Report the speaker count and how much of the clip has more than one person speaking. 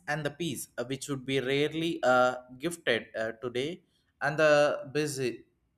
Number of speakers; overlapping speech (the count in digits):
1, no overlap